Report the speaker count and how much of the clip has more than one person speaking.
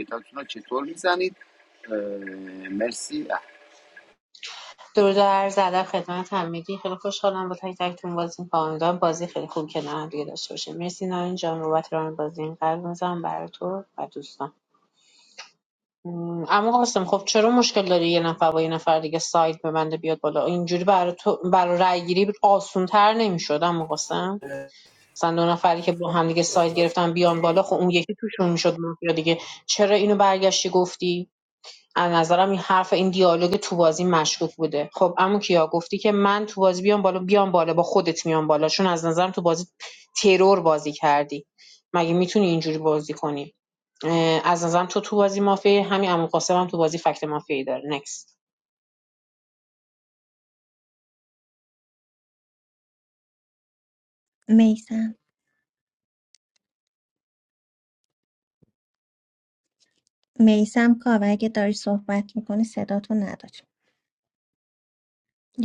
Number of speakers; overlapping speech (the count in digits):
3, no overlap